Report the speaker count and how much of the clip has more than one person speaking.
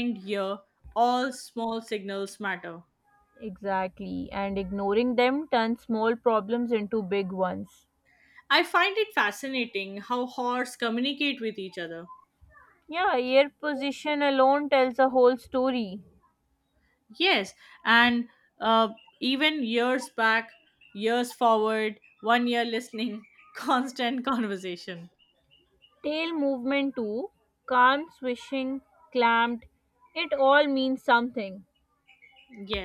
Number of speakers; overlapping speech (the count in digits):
2, no overlap